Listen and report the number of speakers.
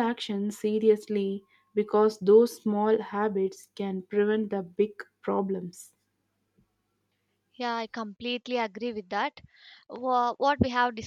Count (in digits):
2